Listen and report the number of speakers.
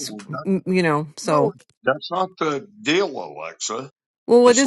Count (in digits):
2